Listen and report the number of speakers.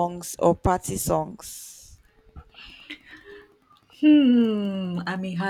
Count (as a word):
two